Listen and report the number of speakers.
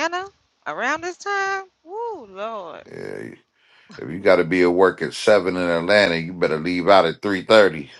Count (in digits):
2